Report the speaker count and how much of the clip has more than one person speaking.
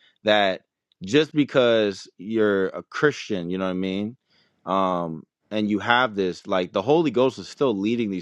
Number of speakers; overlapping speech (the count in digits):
1, no overlap